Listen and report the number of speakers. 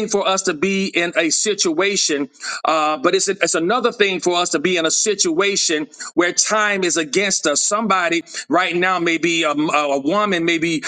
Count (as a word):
one